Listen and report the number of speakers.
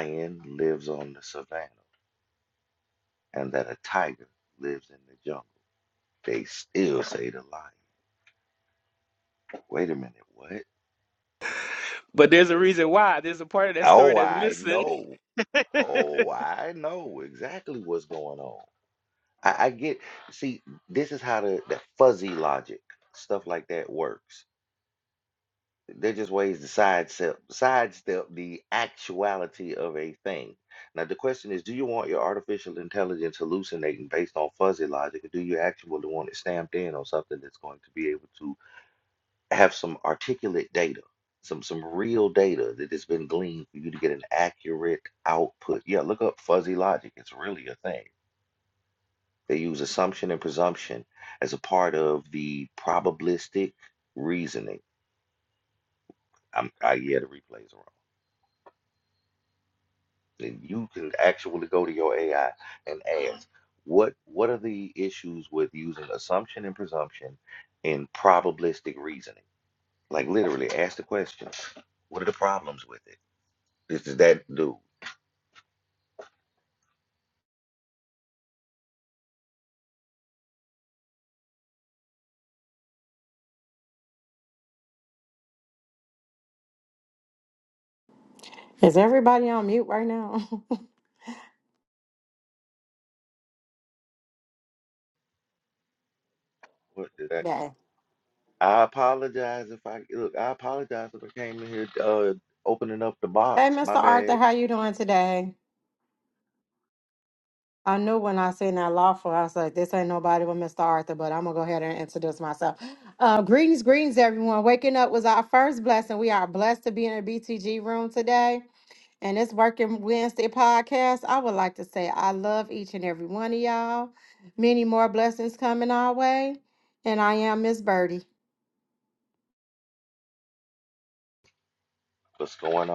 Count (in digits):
3